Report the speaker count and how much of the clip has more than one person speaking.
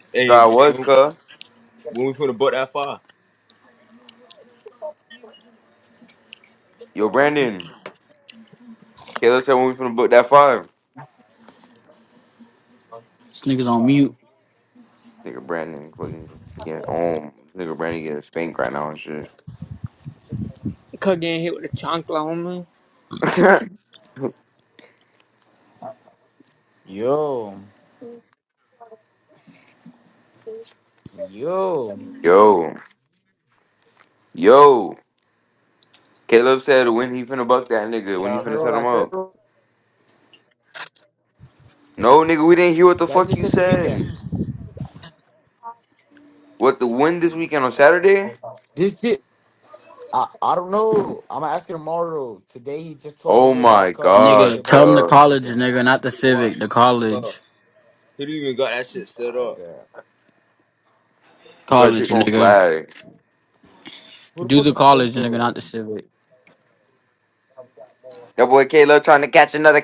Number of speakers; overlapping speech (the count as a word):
five, about 12%